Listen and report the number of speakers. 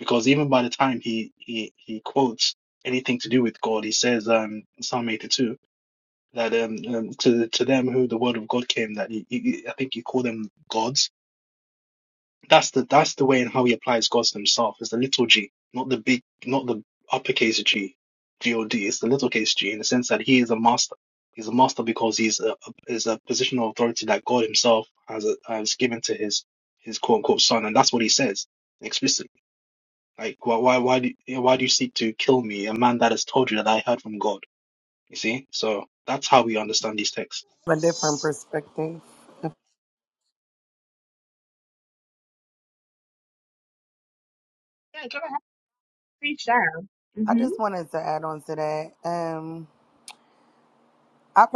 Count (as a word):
three